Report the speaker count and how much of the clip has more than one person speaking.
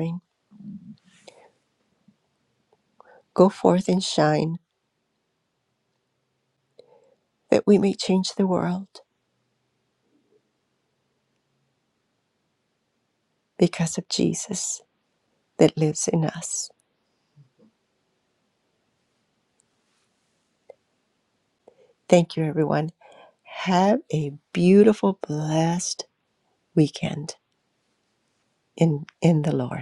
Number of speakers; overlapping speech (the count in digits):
1, no overlap